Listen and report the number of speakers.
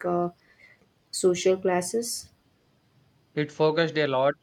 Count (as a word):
two